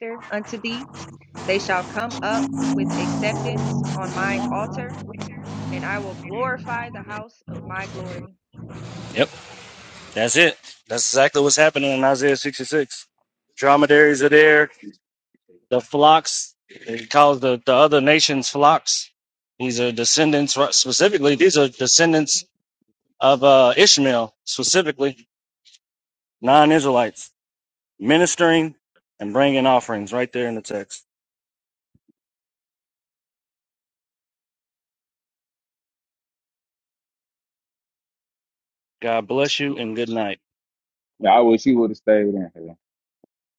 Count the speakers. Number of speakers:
3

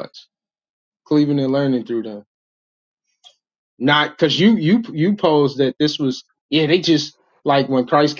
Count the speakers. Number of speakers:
1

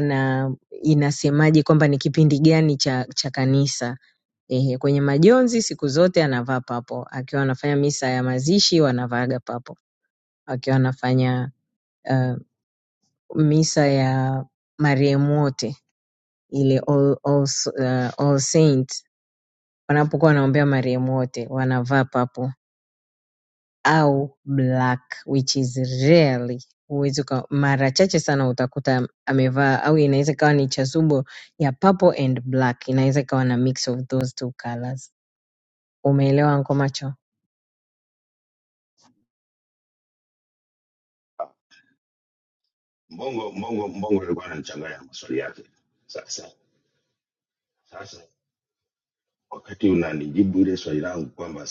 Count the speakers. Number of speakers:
2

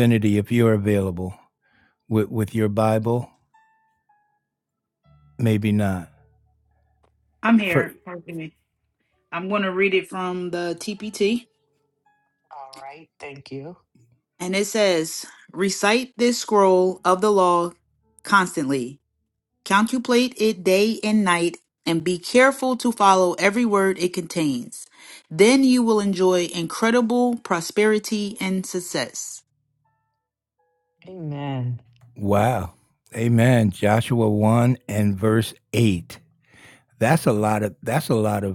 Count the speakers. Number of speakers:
3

